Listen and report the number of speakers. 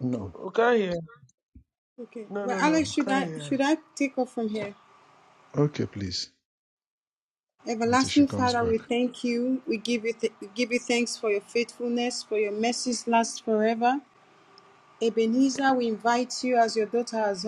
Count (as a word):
three